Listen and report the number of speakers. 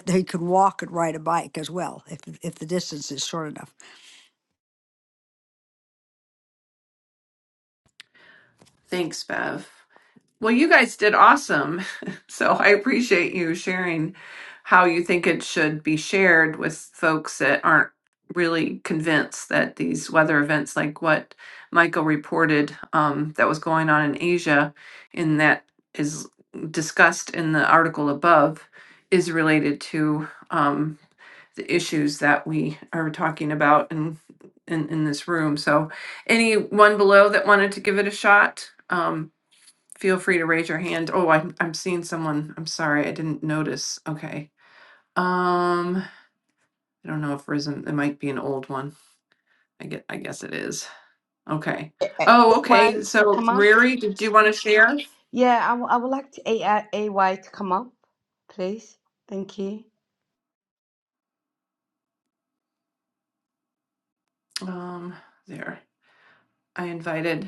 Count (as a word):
three